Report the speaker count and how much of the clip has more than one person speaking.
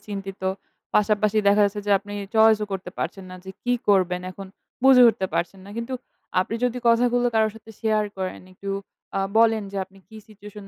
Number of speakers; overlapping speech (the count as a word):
one, no overlap